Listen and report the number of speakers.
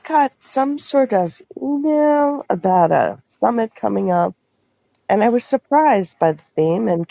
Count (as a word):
one